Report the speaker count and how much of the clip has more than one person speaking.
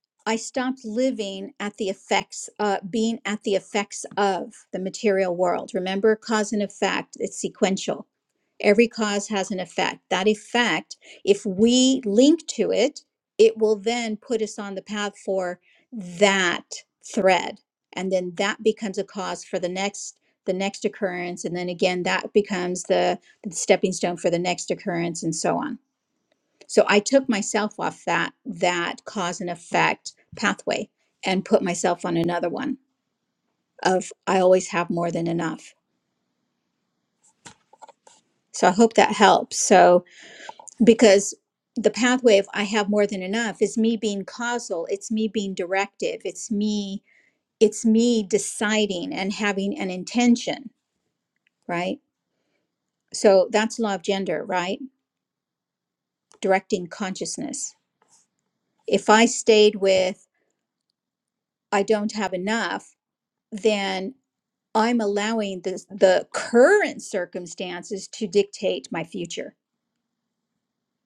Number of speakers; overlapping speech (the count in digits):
1, no overlap